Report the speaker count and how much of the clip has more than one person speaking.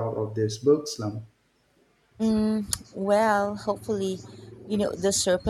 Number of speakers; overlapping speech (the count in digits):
2, no overlap